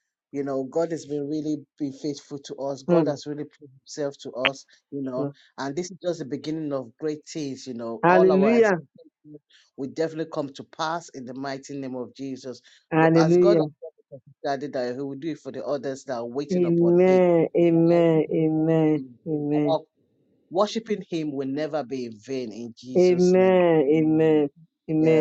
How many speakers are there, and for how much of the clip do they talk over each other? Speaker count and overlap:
two, about 17%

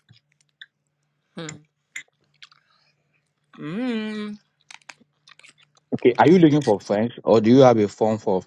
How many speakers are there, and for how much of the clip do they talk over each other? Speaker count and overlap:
two, no overlap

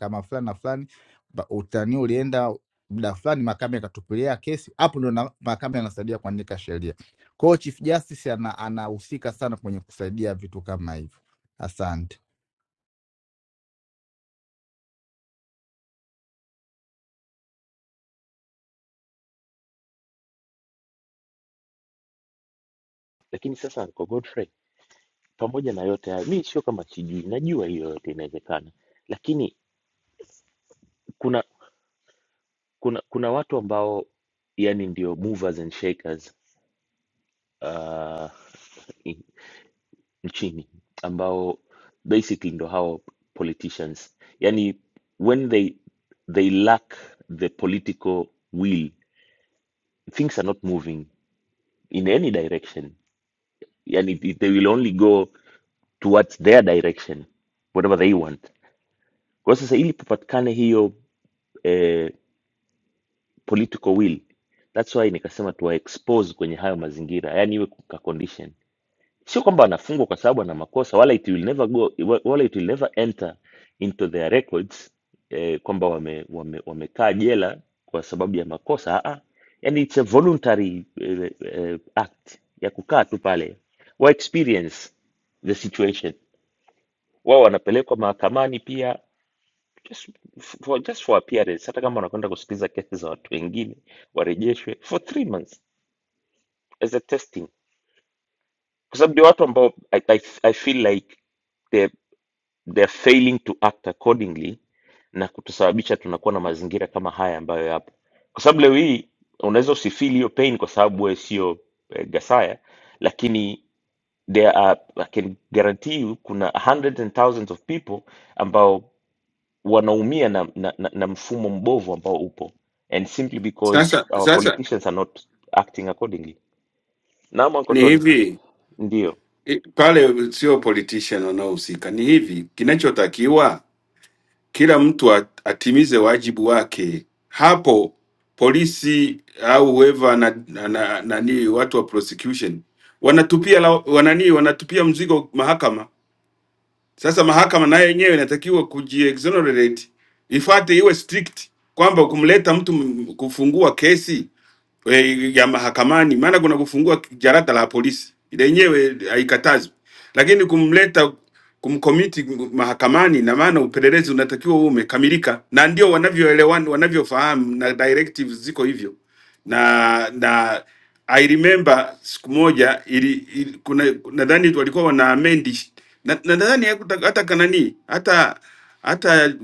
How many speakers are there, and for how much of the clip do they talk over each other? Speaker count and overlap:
three, about 1%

